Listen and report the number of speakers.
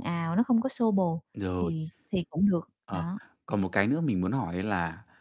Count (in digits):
2